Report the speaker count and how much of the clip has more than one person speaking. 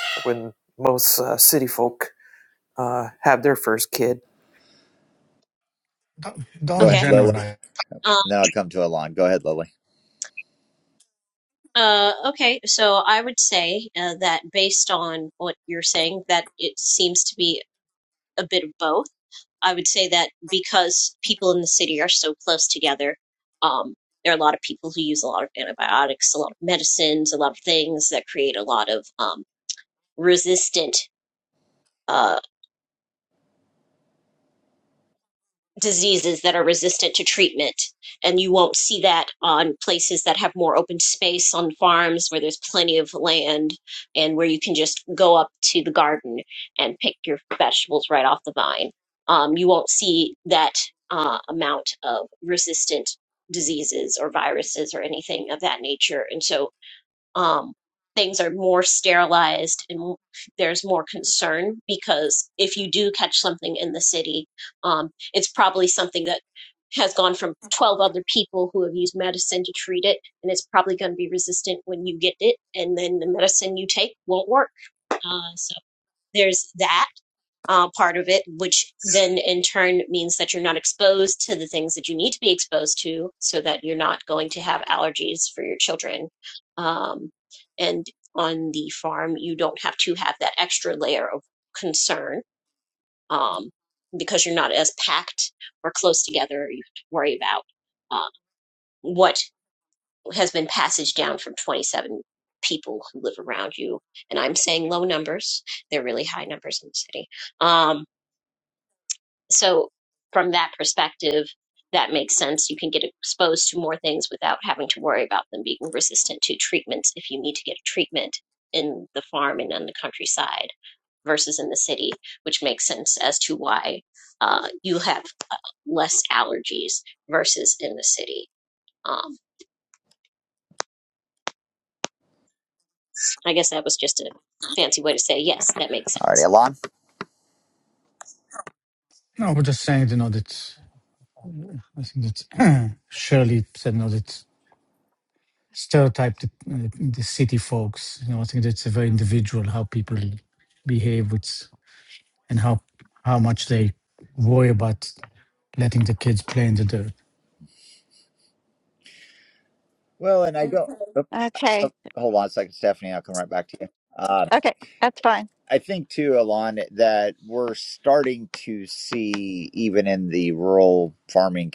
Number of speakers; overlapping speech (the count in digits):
5, under 1%